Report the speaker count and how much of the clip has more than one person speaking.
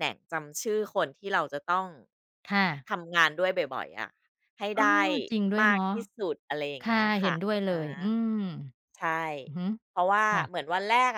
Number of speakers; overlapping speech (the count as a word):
two, about 17%